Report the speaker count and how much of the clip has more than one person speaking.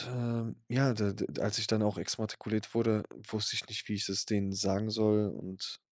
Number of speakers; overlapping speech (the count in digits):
1, no overlap